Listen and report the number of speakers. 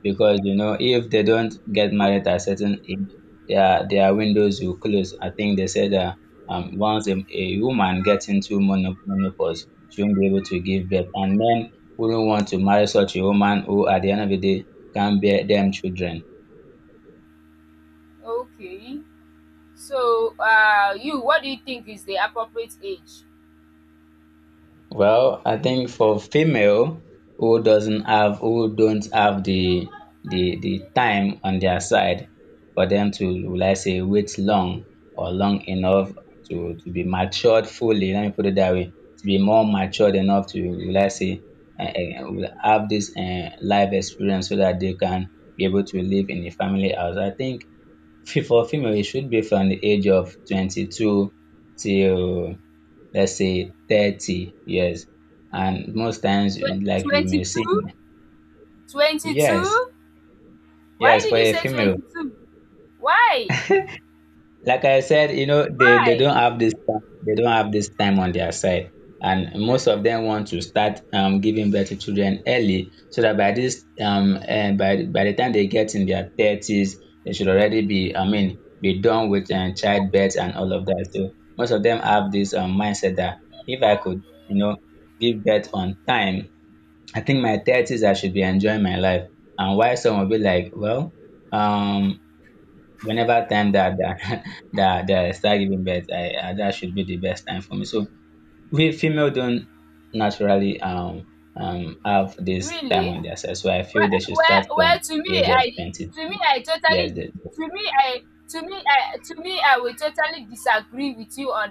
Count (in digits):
2